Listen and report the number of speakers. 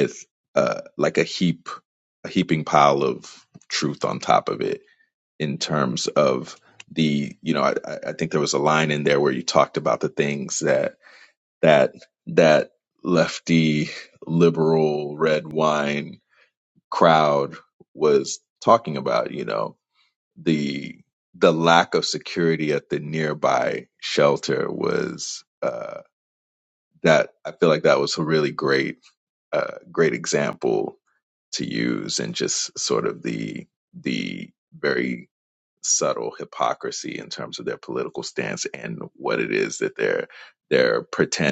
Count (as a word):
one